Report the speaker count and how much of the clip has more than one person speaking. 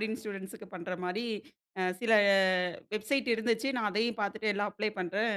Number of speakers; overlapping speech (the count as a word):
one, no overlap